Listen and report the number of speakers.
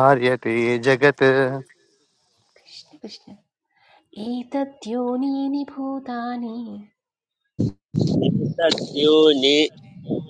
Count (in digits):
3